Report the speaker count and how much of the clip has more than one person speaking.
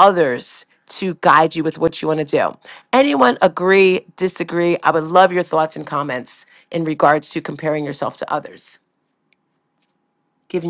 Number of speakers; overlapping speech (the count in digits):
1, no overlap